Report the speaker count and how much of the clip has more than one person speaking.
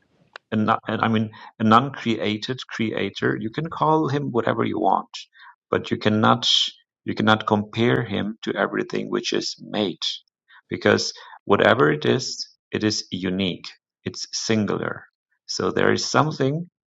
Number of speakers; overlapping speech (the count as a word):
one, no overlap